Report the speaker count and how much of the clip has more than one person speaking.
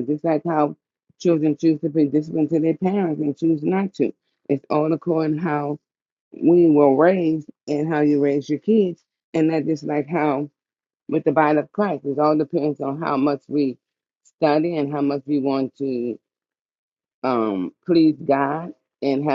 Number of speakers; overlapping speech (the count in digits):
1, no overlap